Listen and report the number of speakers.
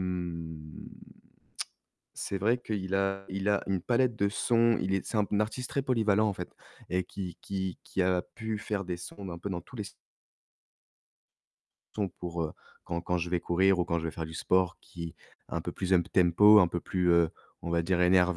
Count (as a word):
one